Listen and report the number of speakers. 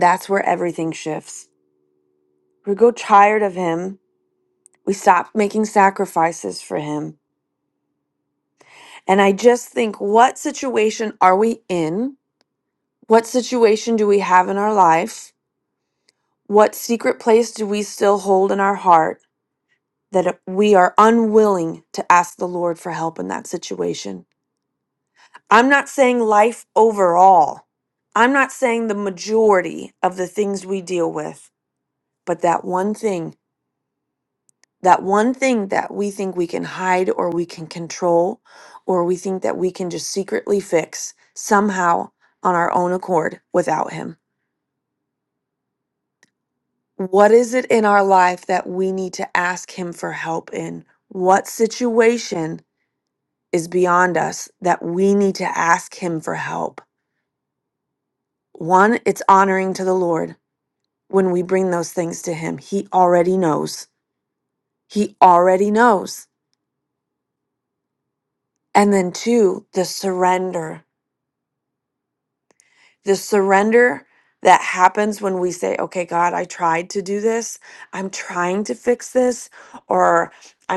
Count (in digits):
1